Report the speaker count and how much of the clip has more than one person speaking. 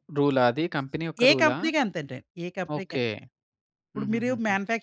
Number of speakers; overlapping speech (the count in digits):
2, about 25%